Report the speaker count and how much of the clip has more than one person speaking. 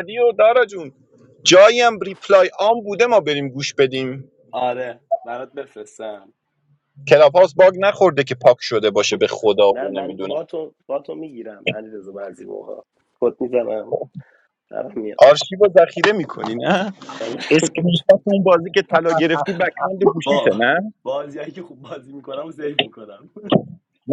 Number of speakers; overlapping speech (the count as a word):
two, about 4%